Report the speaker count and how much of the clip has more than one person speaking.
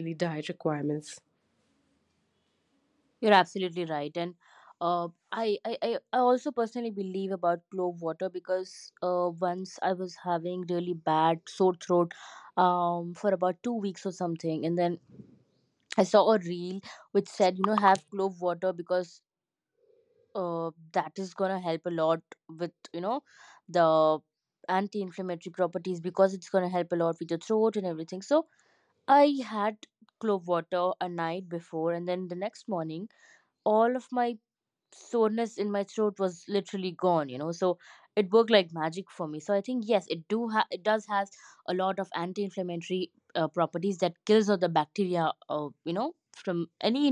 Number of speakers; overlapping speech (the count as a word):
two, no overlap